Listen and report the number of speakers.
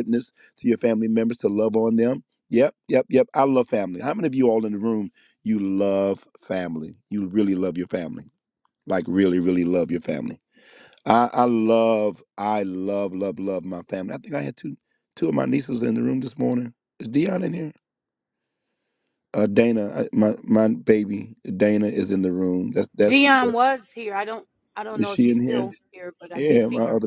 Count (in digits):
2